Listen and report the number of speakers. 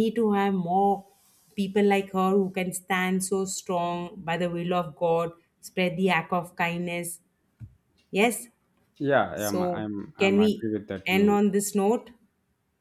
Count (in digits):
2